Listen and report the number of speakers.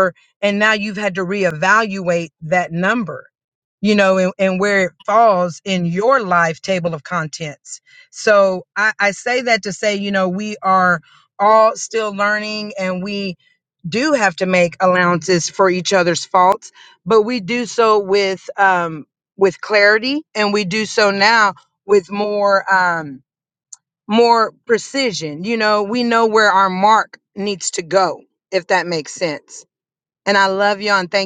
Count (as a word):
one